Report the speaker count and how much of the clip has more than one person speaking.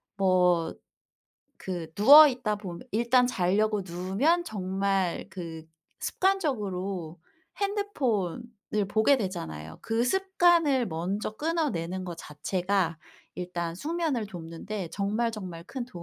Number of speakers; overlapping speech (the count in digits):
1, no overlap